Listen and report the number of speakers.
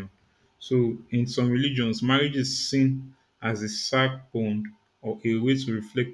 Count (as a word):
one